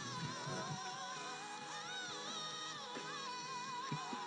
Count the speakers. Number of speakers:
0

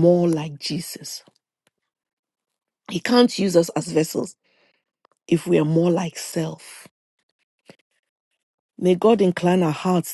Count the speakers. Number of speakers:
1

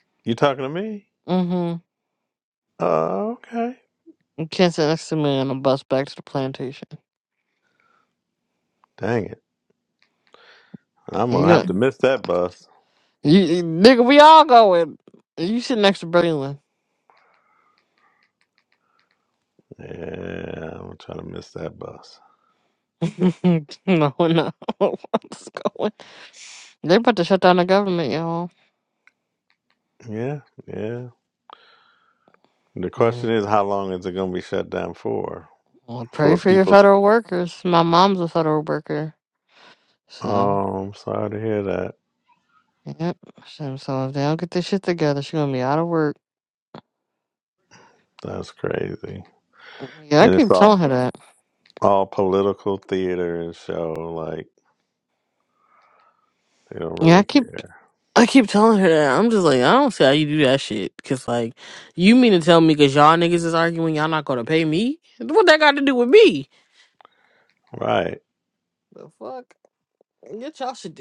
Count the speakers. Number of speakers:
2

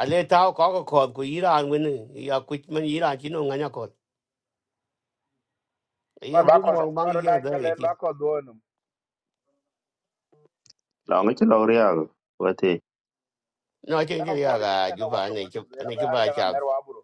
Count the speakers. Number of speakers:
3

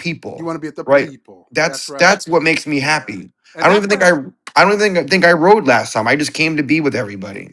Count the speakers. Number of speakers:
2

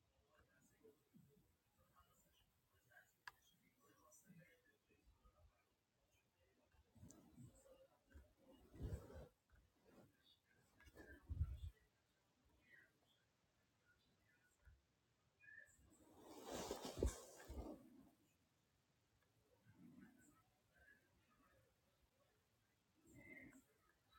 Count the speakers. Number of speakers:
0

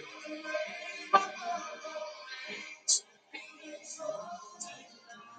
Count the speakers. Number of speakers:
0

